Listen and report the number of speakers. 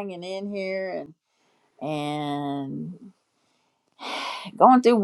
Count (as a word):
one